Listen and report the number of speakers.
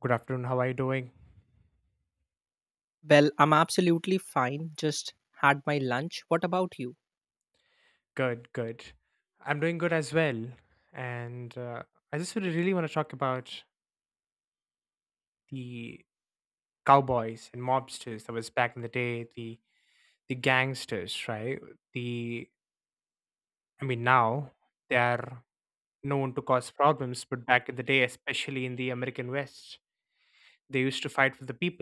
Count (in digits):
2